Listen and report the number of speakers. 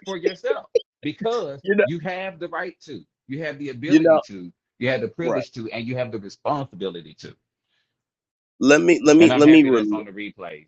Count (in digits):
2